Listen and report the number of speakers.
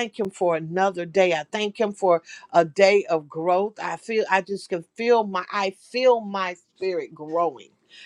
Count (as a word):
one